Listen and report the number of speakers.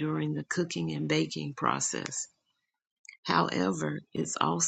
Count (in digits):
1